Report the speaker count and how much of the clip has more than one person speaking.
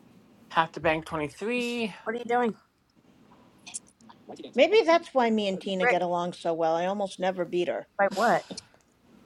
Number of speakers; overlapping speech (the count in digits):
3, about 1%